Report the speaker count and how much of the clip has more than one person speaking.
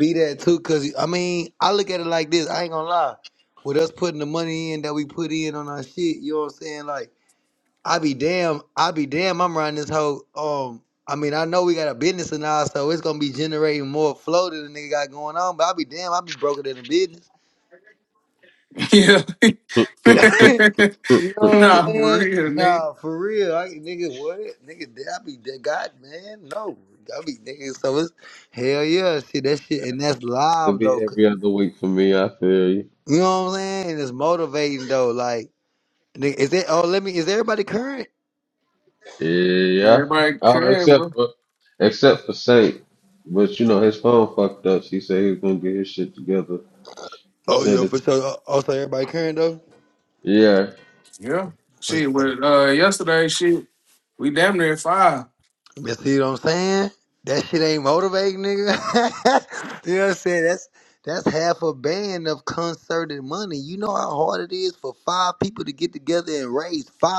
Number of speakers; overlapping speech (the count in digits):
3, about 6%